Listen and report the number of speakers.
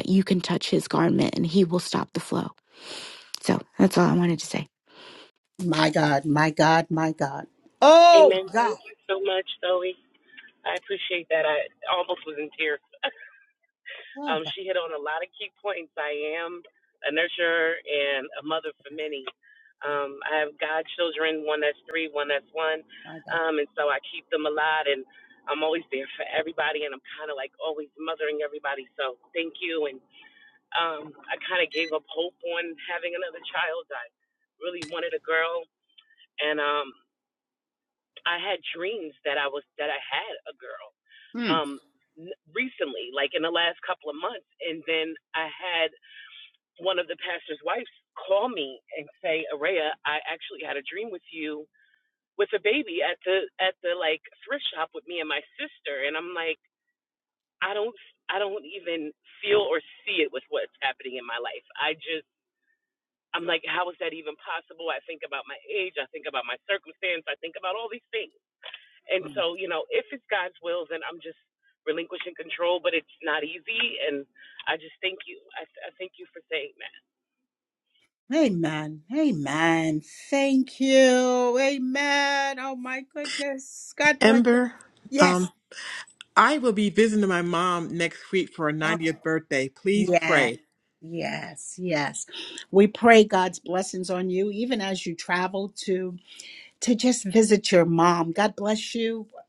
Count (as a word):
four